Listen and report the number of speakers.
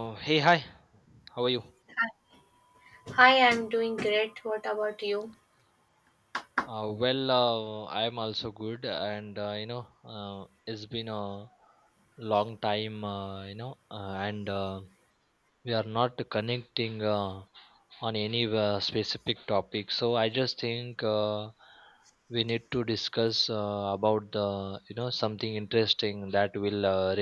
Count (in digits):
2